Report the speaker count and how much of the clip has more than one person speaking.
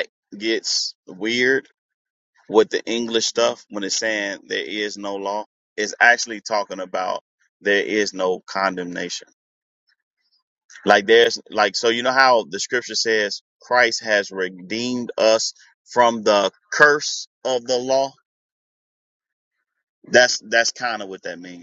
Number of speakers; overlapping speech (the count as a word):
one, no overlap